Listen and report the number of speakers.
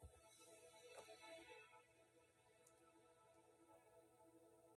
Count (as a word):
zero